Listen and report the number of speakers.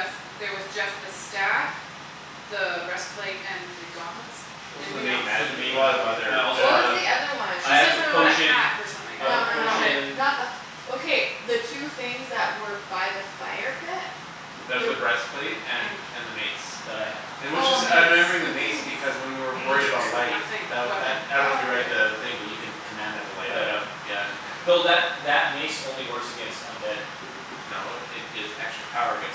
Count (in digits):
4